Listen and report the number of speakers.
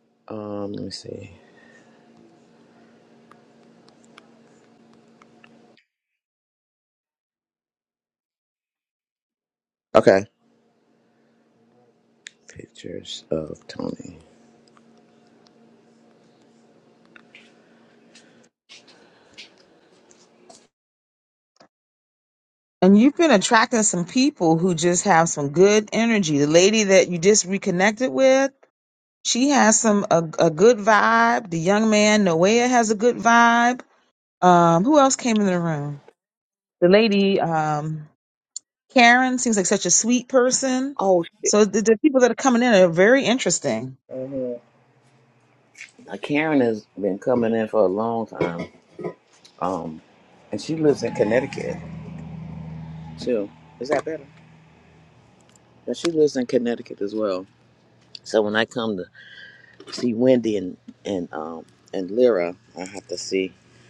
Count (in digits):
2